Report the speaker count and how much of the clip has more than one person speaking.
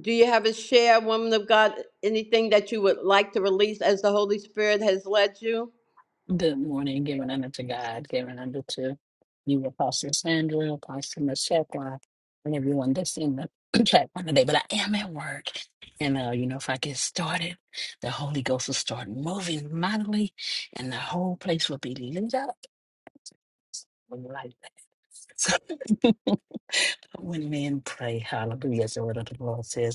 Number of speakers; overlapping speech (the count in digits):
2, no overlap